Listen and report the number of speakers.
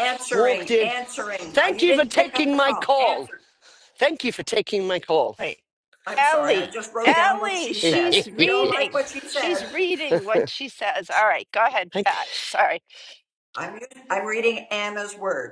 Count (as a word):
three